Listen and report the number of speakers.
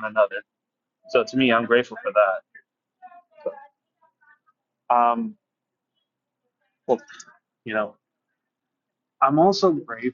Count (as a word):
one